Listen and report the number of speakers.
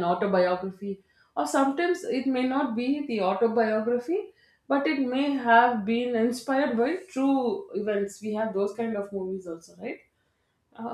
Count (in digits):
1